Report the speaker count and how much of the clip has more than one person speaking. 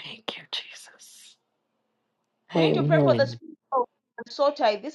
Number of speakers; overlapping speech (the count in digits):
2, about 16%